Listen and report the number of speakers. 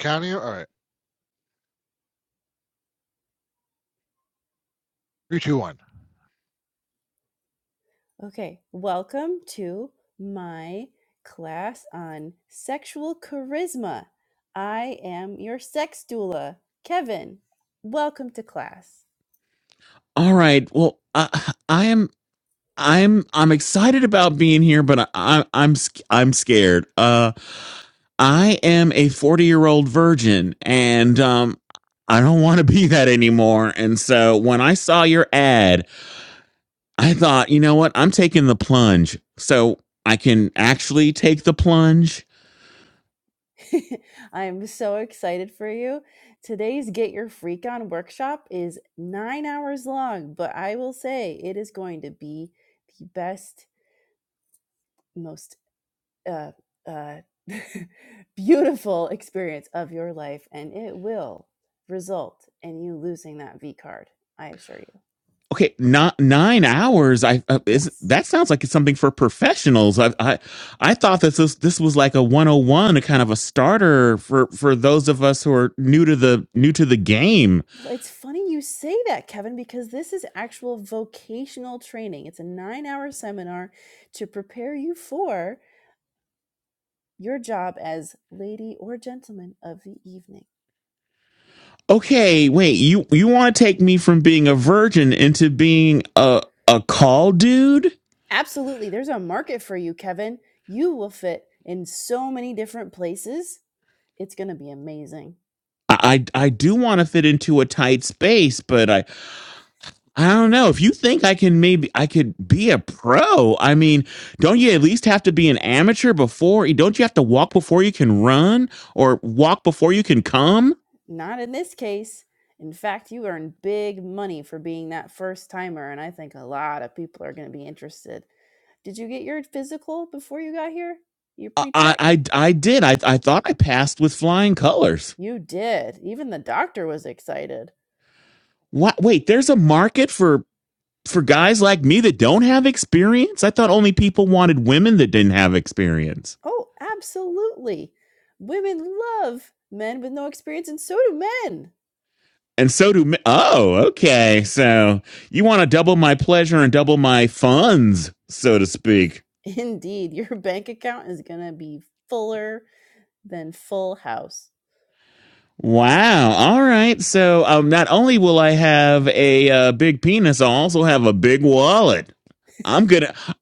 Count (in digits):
3